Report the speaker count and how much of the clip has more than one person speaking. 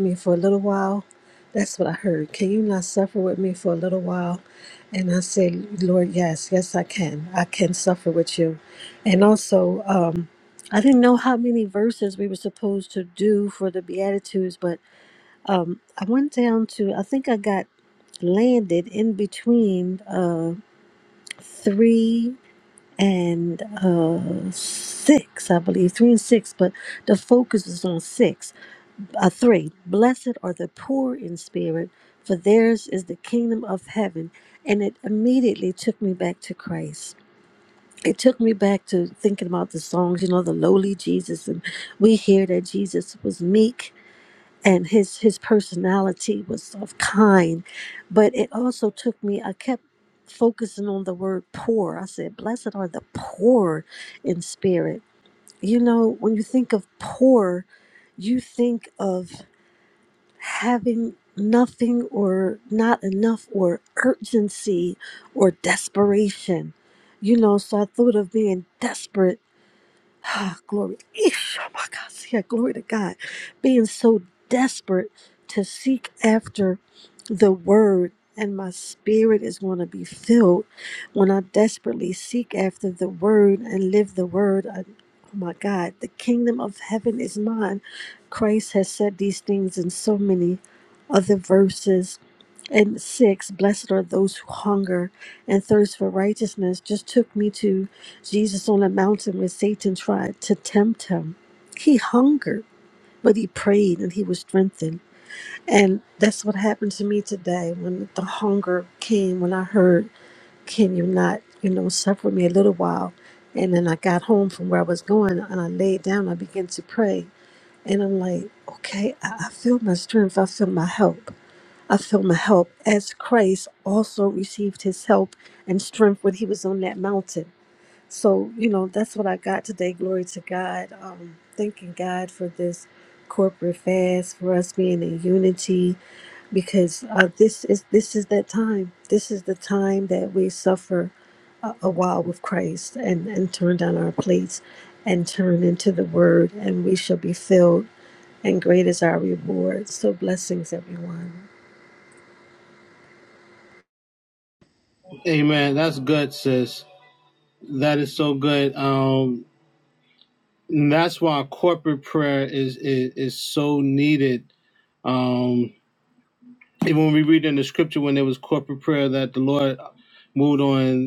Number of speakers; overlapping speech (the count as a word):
two, no overlap